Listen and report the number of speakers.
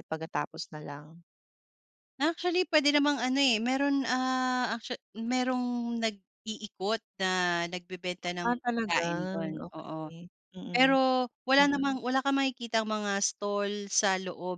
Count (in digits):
2